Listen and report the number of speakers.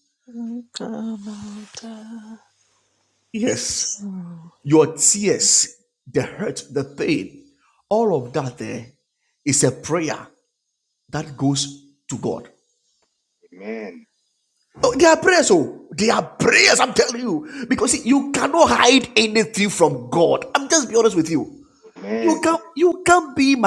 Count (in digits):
3